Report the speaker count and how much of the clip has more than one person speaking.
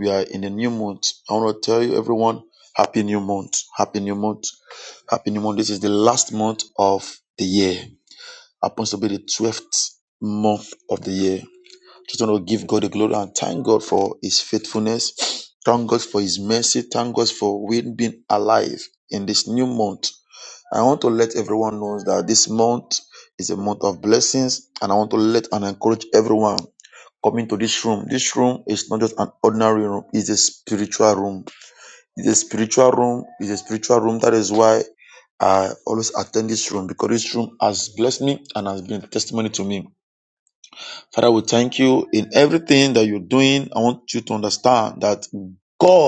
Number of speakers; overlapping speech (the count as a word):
one, no overlap